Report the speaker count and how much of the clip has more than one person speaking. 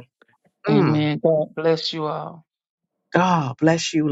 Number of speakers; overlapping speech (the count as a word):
two, about 8%